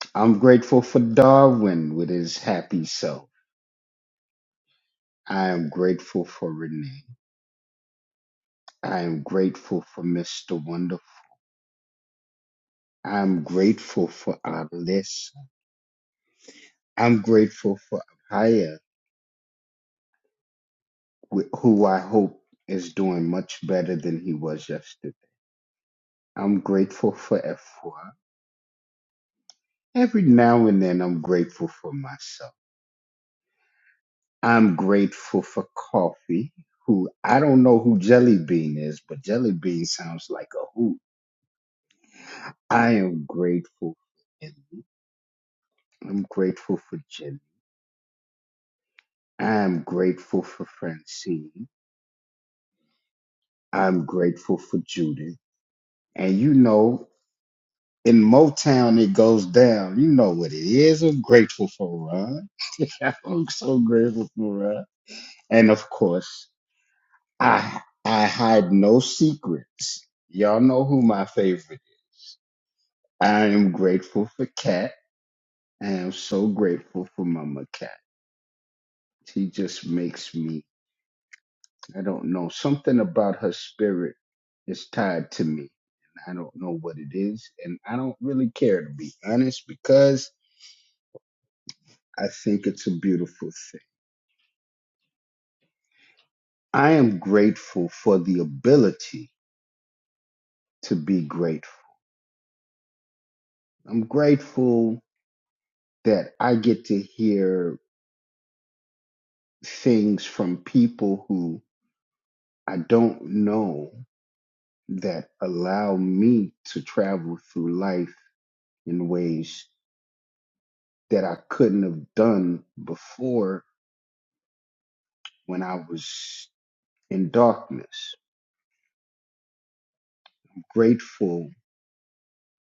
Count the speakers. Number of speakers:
1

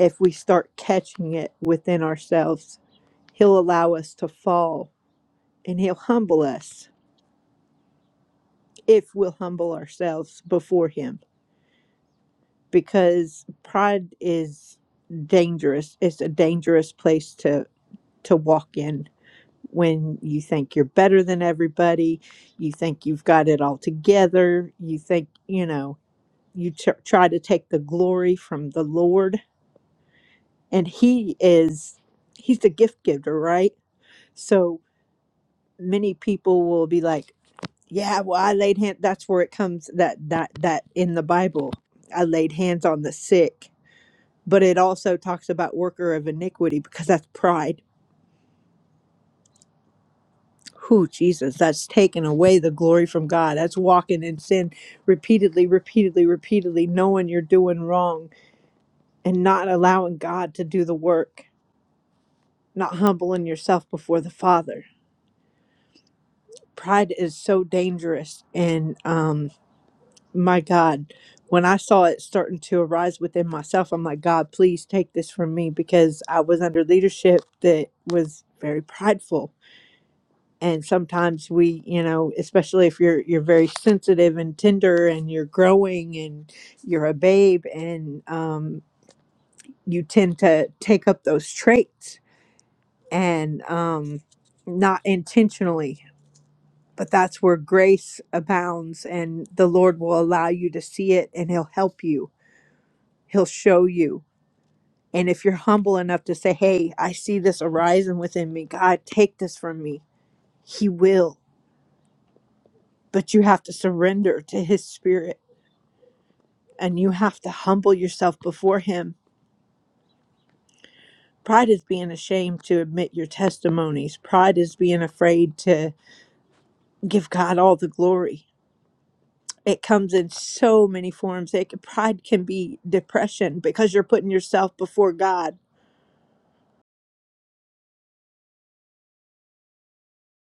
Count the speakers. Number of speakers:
1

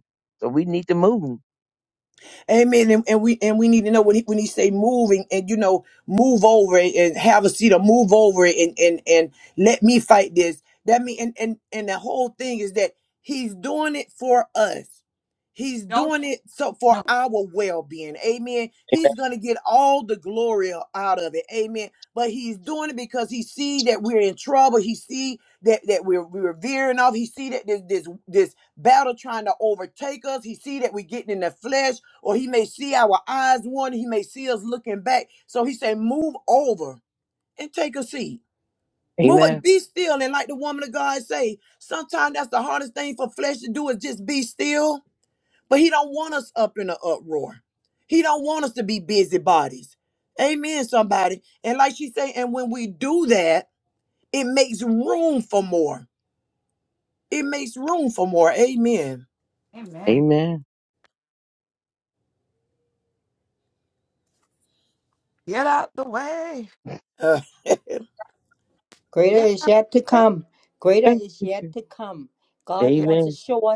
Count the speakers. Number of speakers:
4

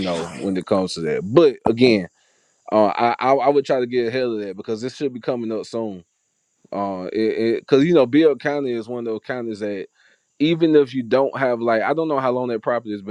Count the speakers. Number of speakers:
1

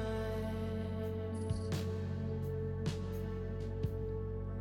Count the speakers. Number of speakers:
0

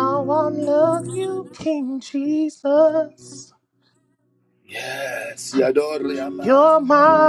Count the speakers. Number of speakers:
2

